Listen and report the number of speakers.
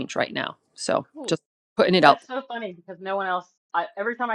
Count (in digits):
2